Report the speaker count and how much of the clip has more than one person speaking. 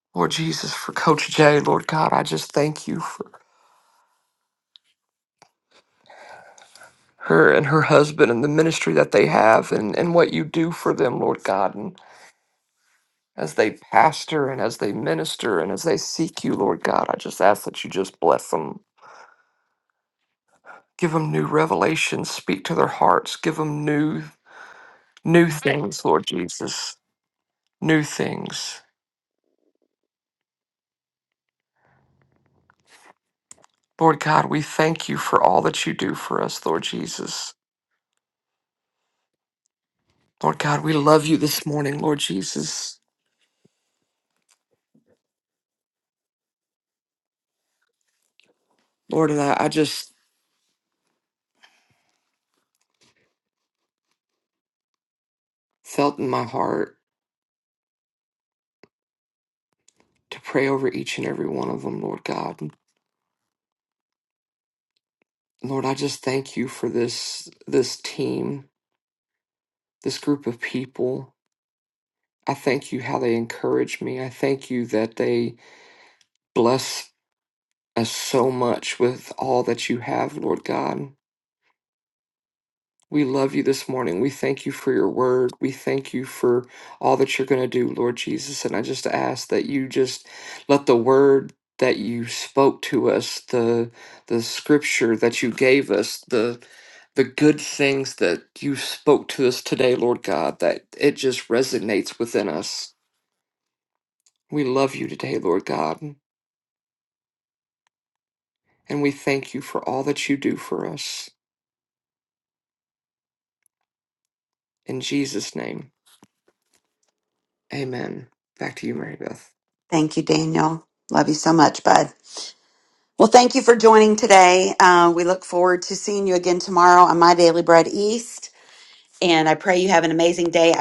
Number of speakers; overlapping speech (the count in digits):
2, no overlap